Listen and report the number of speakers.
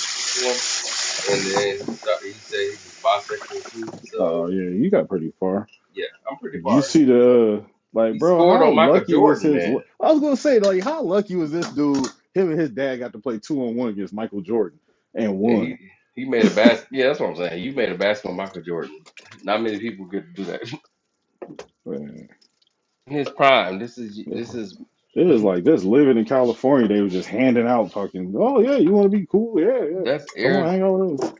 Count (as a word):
two